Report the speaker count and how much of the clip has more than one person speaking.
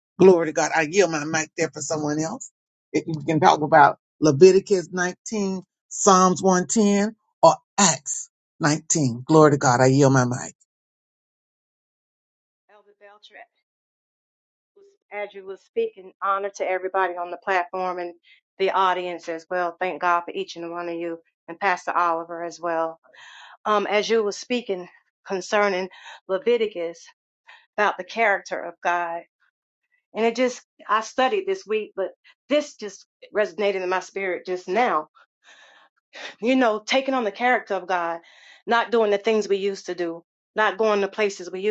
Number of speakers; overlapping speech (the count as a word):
two, no overlap